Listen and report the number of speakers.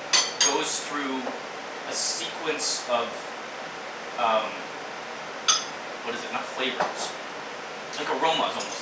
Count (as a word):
one